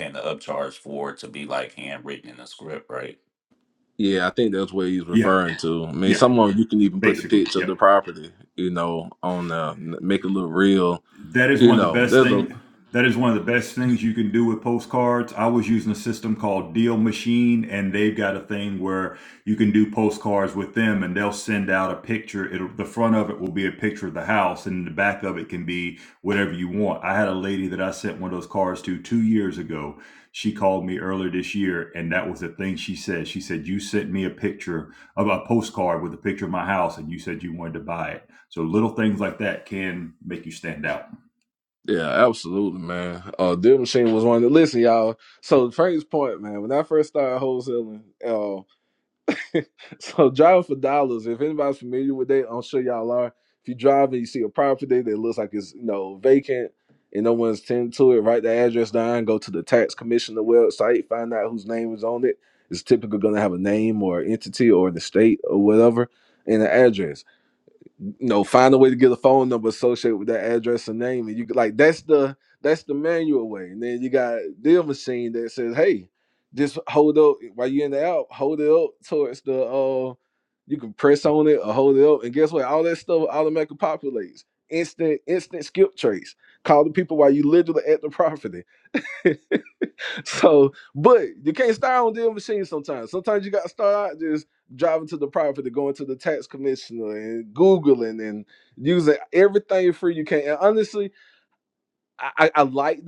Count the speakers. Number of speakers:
three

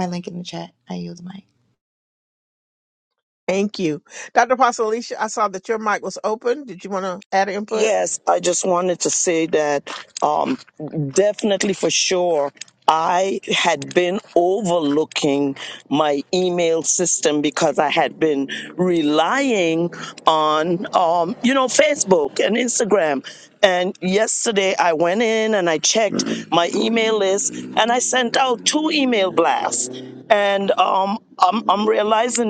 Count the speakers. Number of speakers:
three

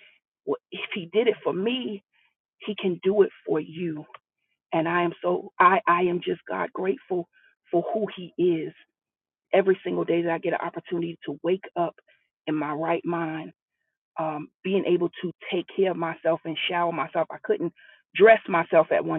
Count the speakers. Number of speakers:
one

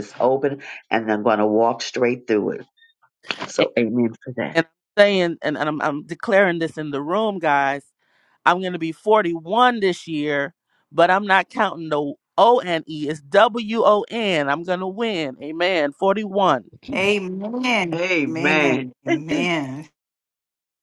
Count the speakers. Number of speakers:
three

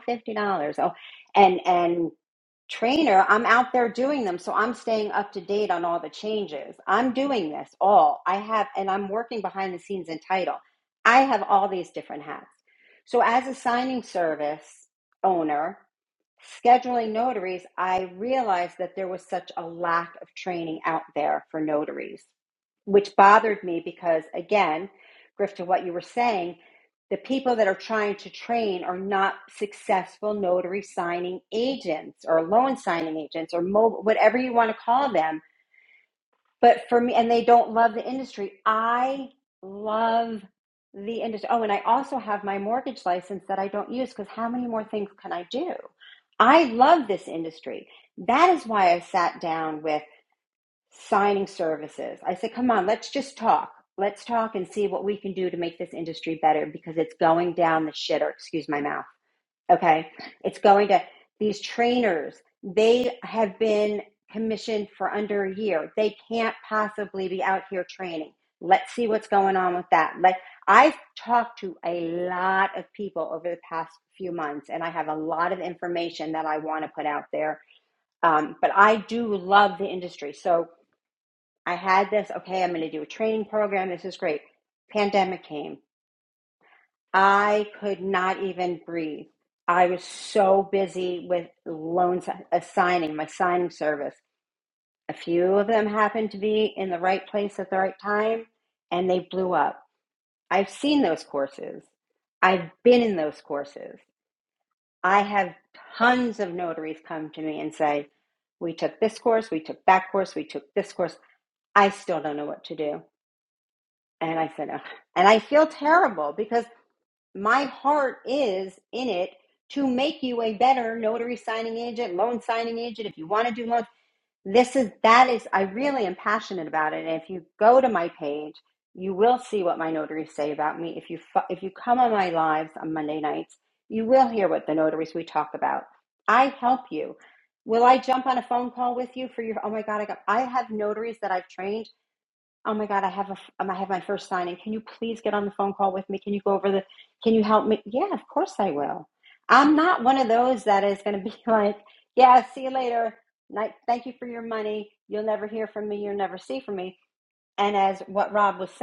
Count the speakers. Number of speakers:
one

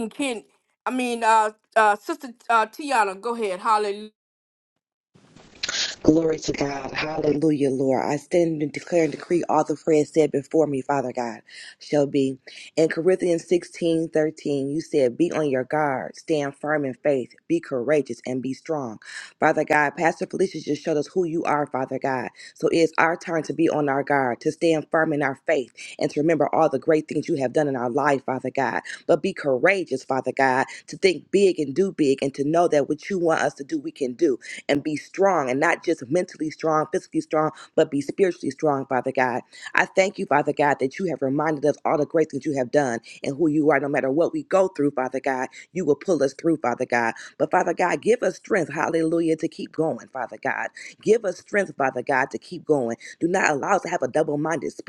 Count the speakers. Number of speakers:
two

